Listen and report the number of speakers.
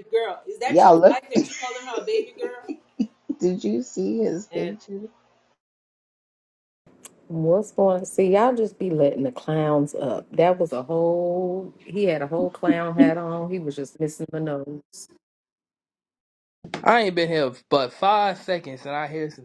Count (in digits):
4